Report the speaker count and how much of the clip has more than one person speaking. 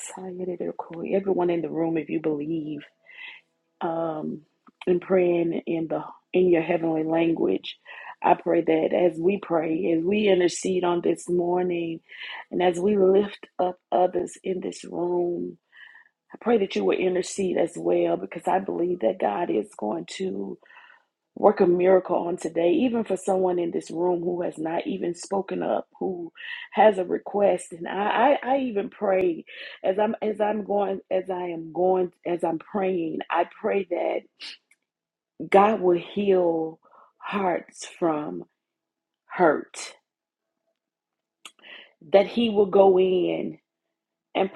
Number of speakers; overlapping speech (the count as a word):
one, no overlap